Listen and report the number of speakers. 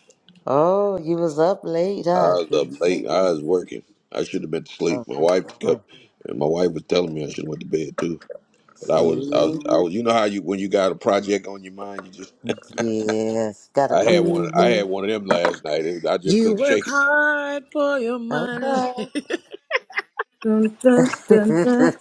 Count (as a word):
four